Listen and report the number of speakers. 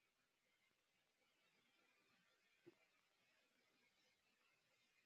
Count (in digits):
0